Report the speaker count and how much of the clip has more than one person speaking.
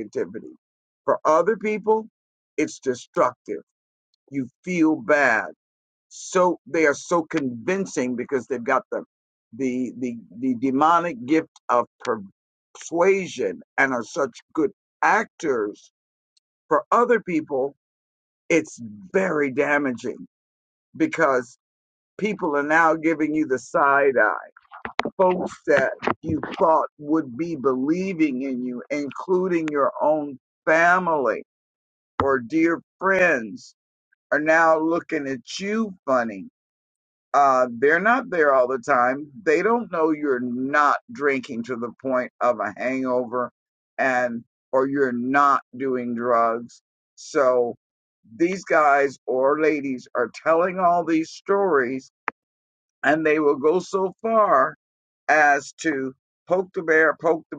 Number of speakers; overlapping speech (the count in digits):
1, no overlap